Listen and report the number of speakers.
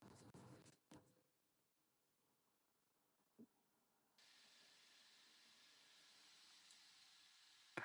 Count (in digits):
0